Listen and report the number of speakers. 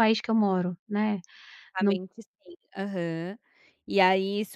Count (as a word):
two